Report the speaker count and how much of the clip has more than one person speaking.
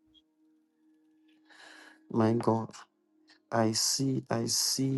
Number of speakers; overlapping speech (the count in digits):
1, no overlap